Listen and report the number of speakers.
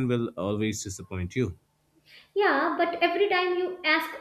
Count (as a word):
two